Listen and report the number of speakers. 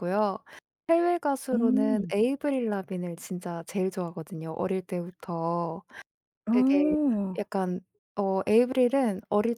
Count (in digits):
2